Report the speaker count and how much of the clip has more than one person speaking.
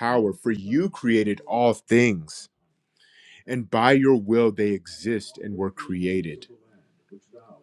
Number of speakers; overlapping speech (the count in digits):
1, no overlap